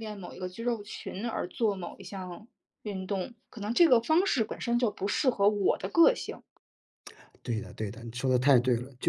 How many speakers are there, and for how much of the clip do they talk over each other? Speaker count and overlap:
2, no overlap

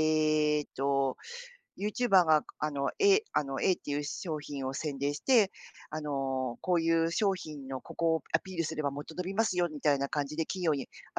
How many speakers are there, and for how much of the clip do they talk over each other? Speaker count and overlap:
1, no overlap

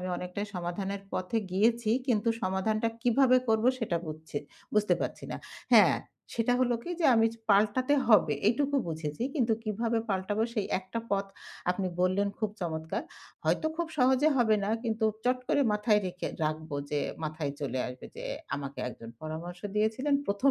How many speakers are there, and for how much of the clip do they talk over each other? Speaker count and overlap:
1, no overlap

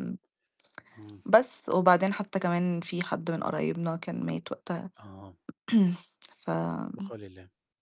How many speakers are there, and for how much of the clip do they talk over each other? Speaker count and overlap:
2, no overlap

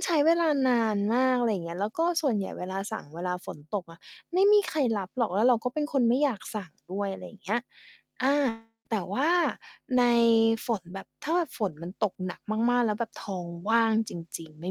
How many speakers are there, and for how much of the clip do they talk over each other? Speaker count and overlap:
1, no overlap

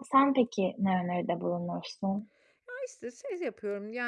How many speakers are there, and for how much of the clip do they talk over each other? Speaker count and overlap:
2, no overlap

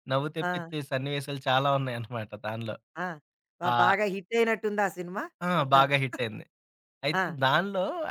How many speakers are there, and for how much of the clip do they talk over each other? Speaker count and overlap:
2, about 13%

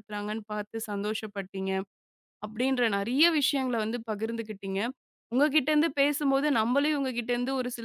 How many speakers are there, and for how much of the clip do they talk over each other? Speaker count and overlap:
1, no overlap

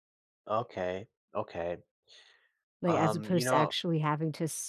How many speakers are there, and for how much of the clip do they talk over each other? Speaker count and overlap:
2, about 18%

